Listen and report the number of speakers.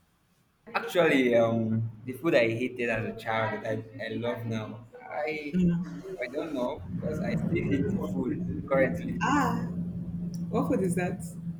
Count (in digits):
2